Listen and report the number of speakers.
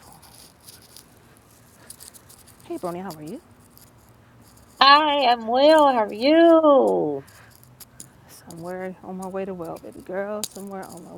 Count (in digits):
2